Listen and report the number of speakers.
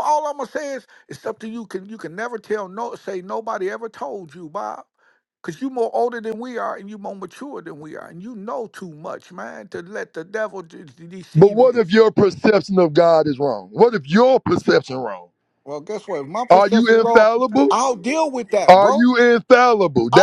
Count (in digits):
2